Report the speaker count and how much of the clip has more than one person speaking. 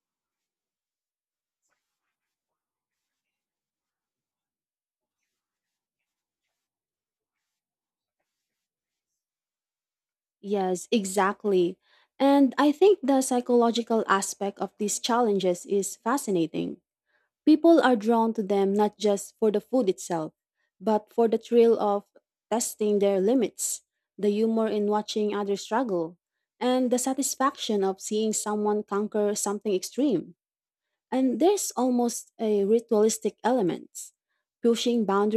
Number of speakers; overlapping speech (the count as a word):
one, no overlap